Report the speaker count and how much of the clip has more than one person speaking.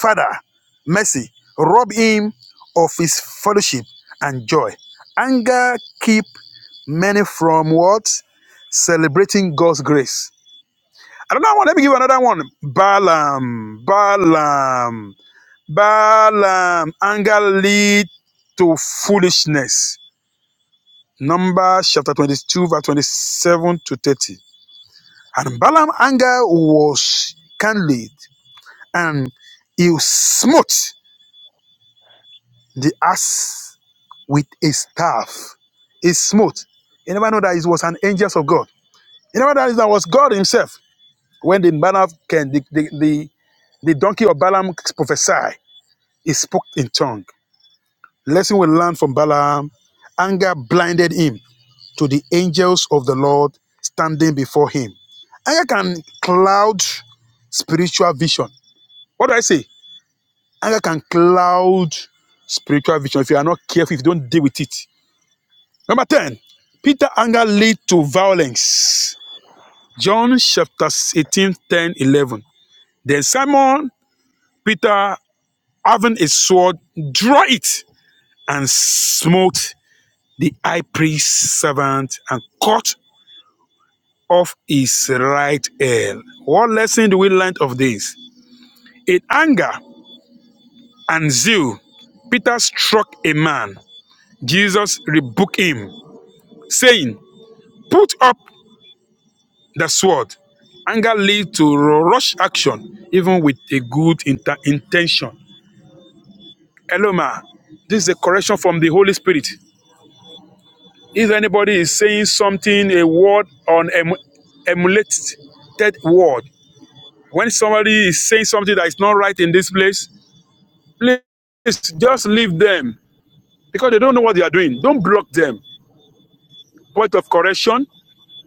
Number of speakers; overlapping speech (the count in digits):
1, no overlap